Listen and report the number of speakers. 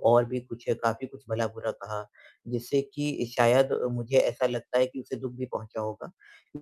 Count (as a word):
one